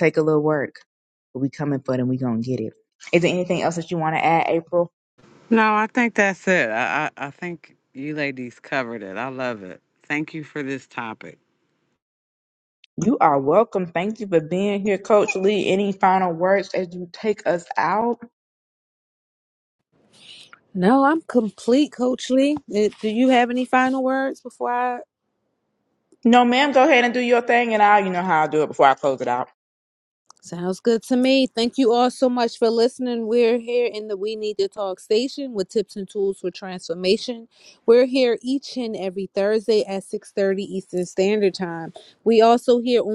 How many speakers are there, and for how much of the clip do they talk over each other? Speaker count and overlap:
3, no overlap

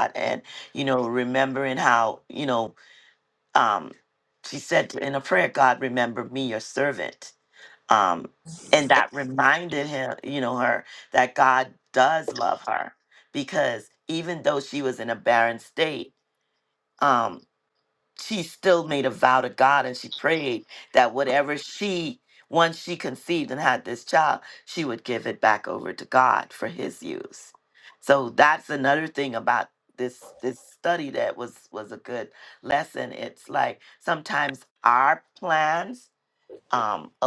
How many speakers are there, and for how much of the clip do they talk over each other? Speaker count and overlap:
1, no overlap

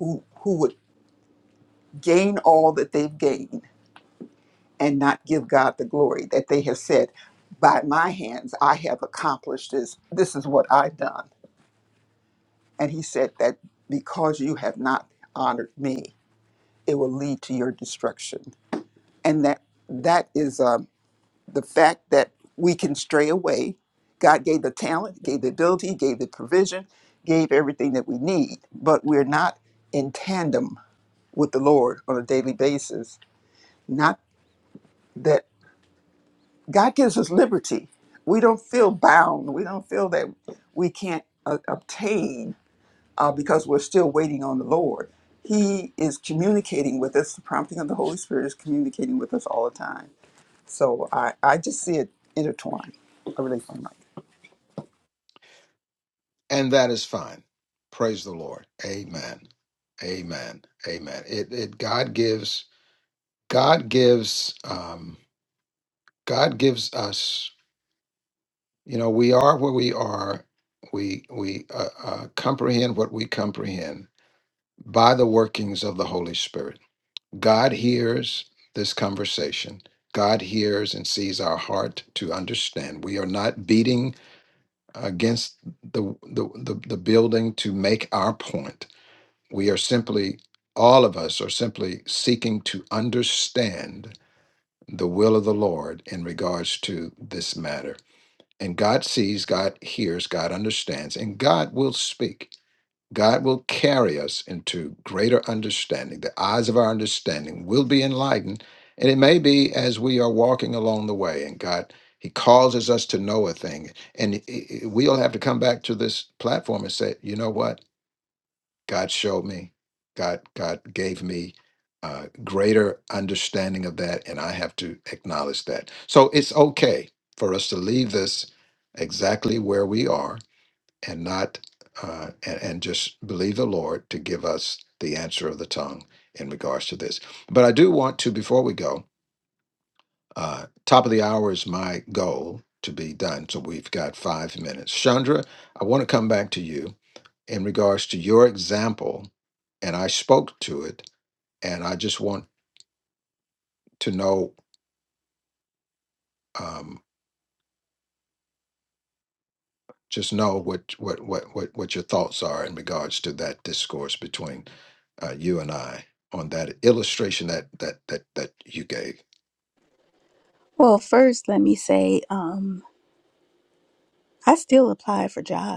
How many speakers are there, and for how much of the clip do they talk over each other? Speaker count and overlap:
3, no overlap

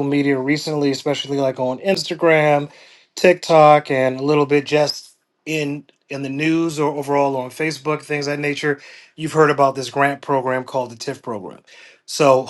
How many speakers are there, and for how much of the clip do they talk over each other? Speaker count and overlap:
1, no overlap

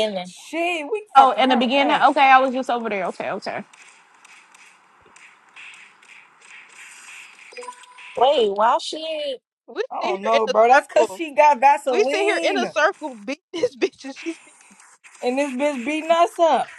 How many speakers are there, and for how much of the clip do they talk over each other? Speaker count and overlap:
4, about 17%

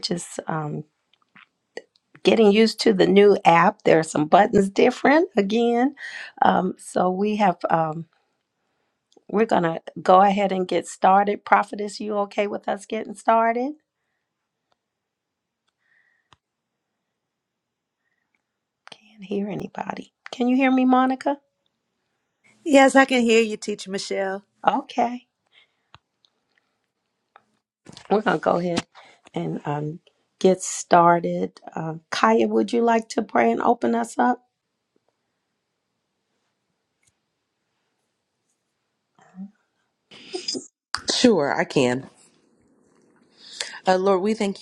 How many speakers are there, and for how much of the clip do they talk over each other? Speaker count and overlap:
3, no overlap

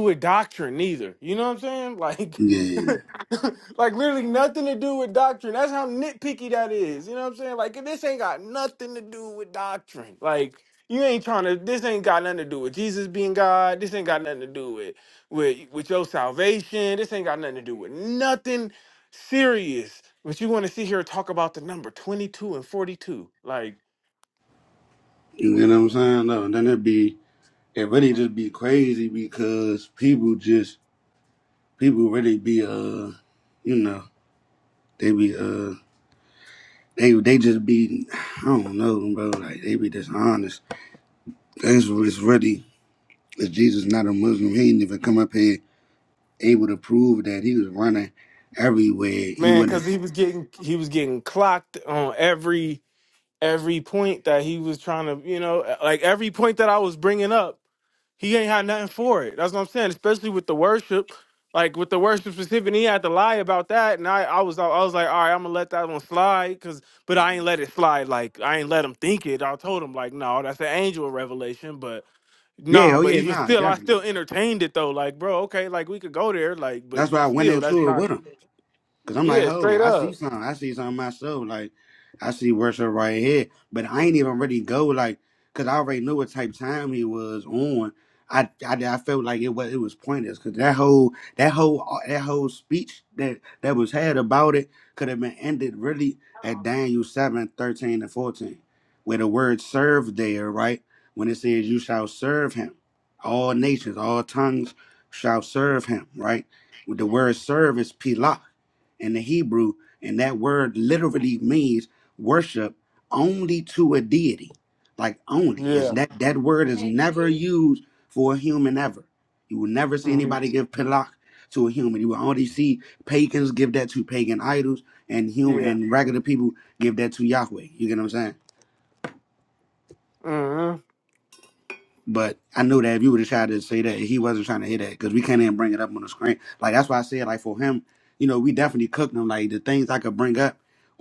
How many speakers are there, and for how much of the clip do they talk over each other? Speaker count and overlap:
2, about 3%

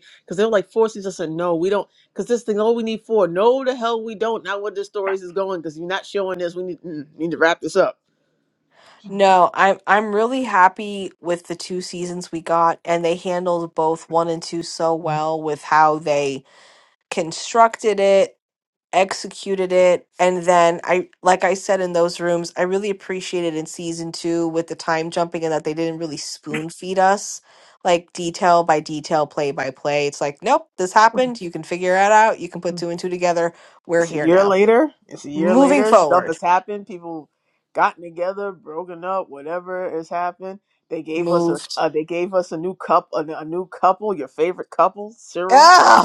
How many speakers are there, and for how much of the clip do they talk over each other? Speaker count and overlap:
2, about 5%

